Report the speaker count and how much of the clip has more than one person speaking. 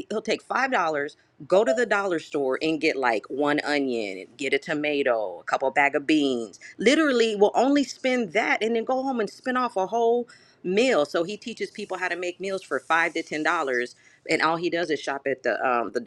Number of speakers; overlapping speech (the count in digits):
1, no overlap